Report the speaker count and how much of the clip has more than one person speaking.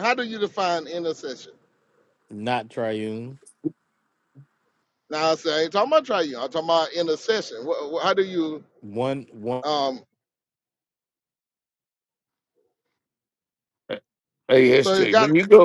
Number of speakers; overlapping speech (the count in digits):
3, about 3%